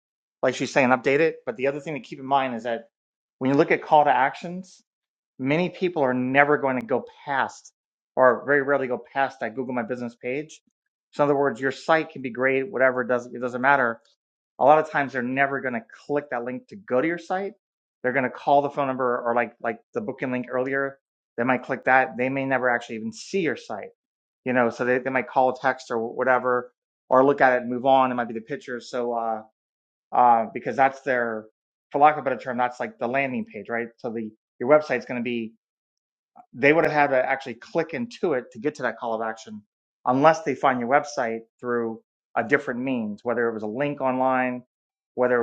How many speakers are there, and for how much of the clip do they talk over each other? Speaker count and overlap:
one, no overlap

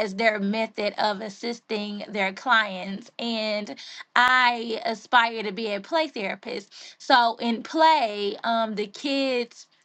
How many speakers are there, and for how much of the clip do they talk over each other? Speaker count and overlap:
one, no overlap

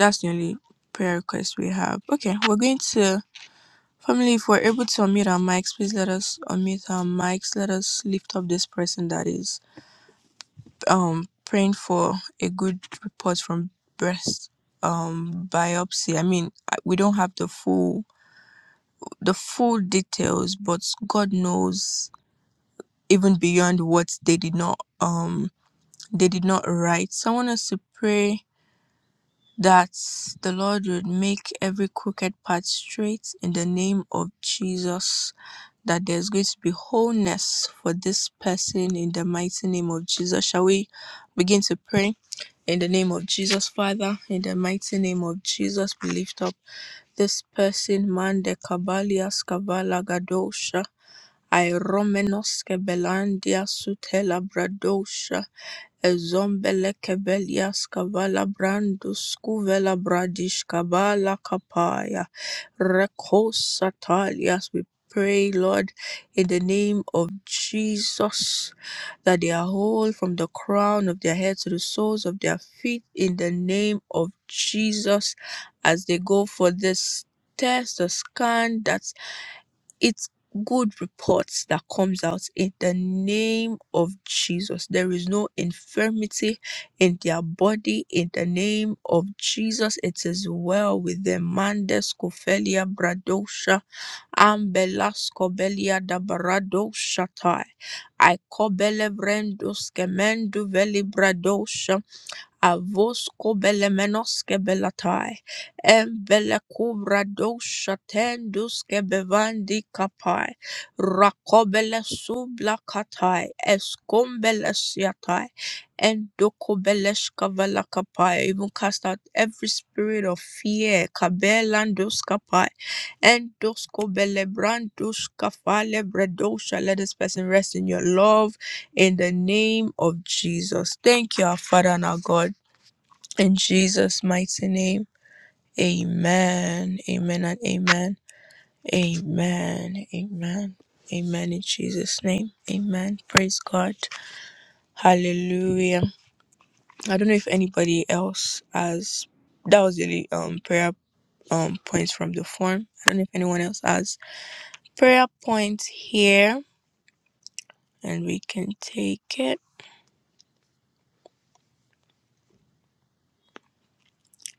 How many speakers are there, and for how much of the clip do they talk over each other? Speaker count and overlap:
one, no overlap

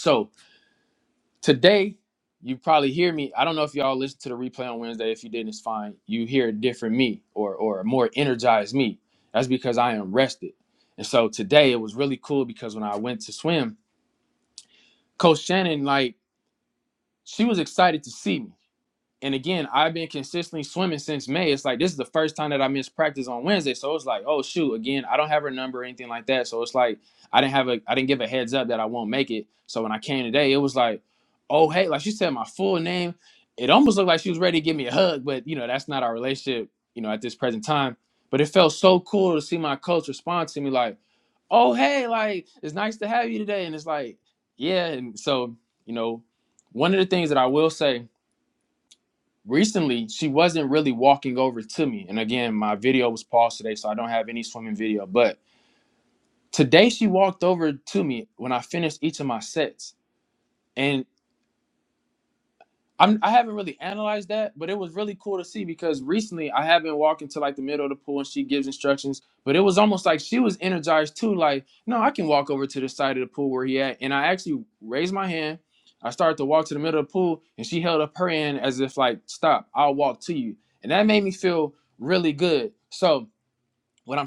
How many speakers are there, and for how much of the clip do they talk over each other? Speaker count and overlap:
one, no overlap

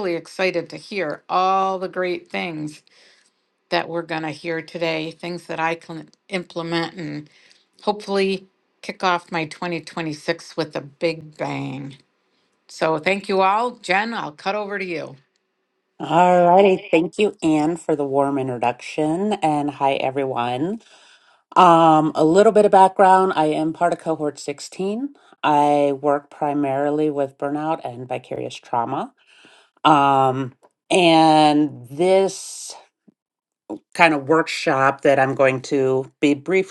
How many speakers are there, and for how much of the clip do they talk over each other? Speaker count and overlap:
two, no overlap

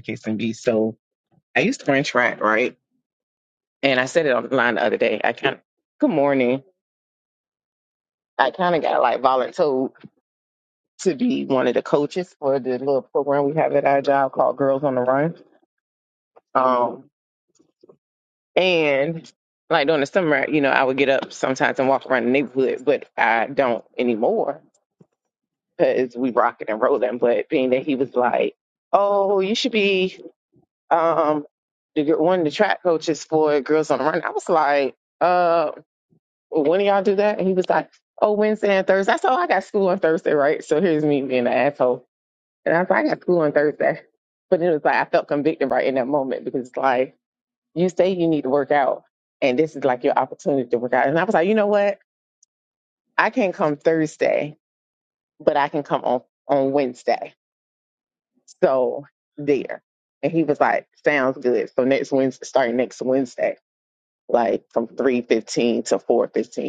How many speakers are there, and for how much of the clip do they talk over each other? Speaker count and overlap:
one, no overlap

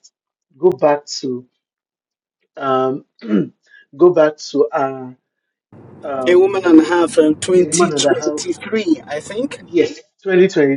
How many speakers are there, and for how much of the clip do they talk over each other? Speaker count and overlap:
two, about 13%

